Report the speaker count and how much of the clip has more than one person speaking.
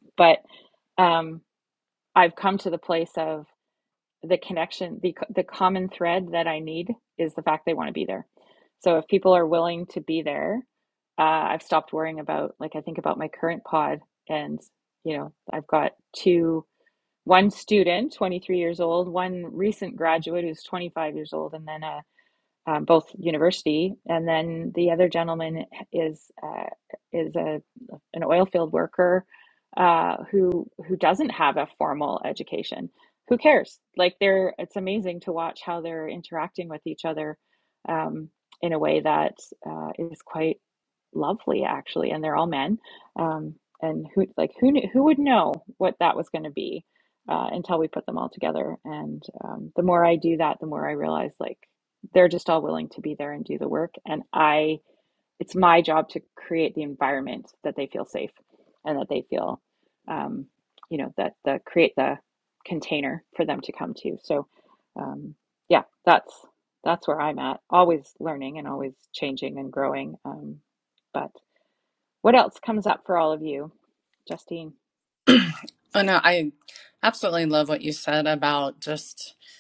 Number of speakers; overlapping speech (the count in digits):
2, no overlap